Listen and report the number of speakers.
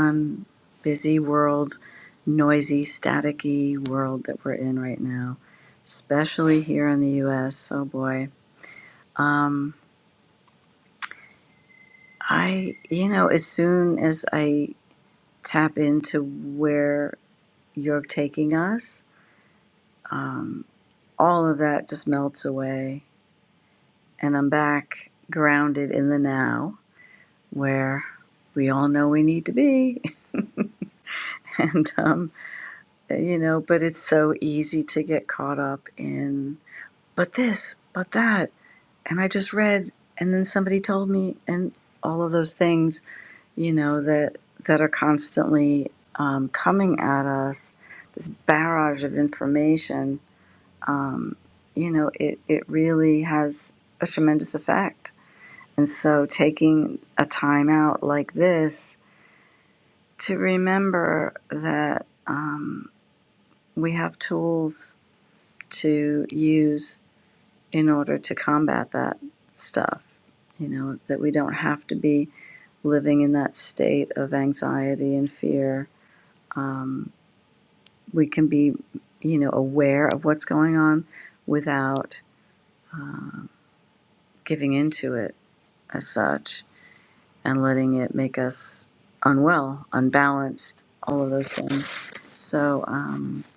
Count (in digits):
1